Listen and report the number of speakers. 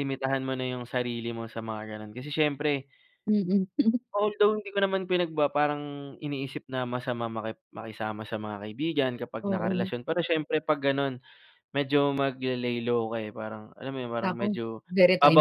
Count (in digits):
2